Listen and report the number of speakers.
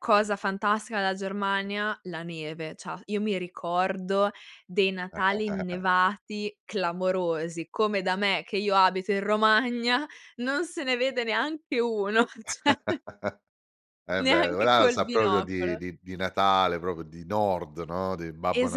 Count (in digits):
2